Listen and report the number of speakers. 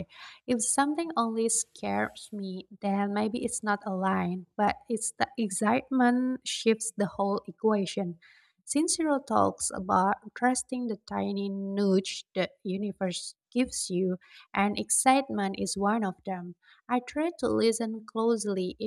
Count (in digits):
1